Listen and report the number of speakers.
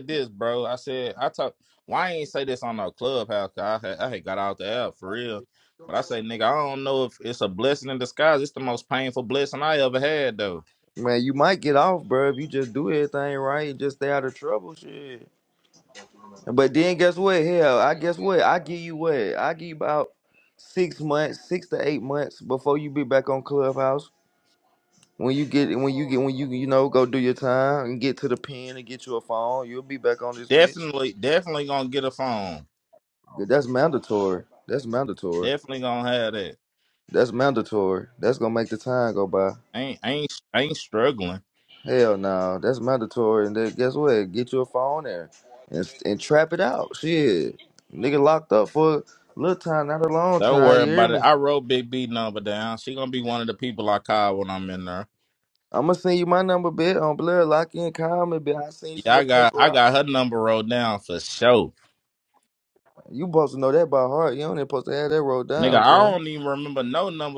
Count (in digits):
2